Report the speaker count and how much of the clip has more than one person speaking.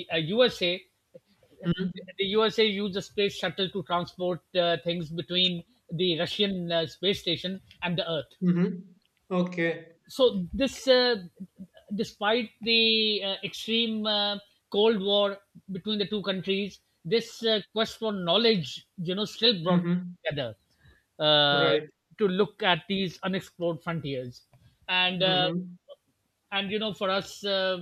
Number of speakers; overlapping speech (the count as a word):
two, about 2%